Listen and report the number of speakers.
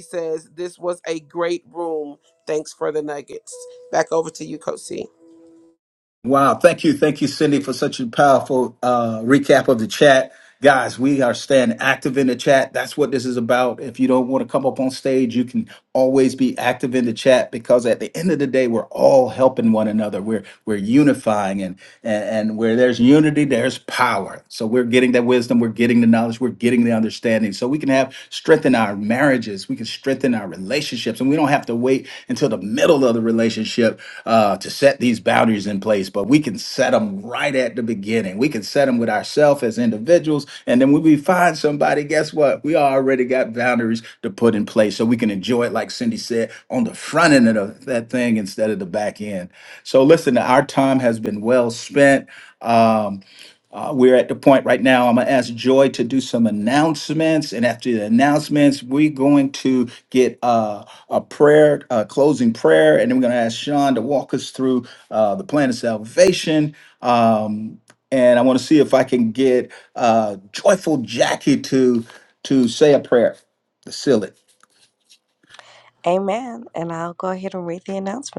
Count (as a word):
three